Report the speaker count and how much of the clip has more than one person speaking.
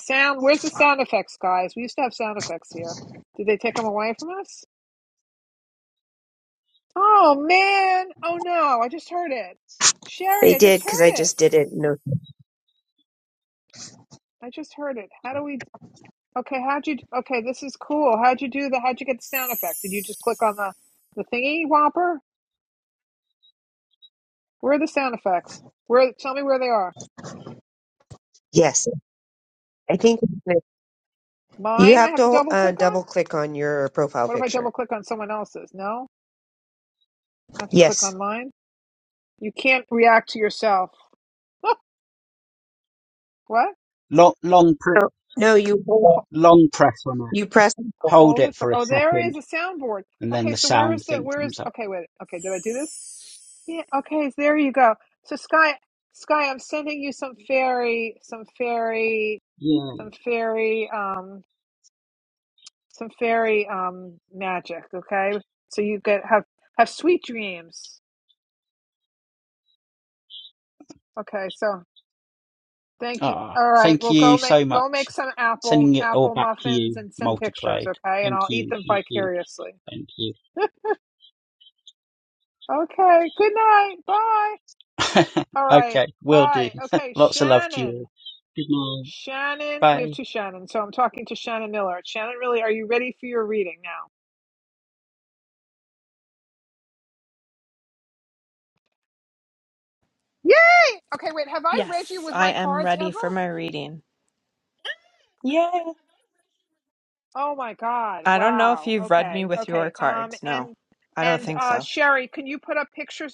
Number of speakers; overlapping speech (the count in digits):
4, about 15%